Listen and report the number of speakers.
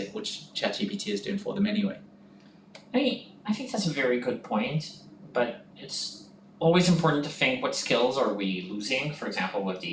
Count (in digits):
2